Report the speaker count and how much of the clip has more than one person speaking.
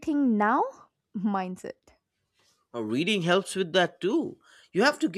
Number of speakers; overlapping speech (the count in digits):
2, no overlap